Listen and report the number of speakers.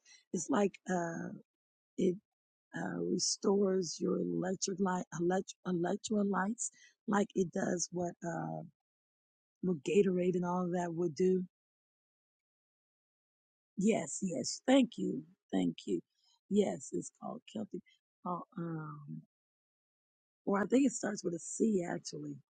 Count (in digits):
1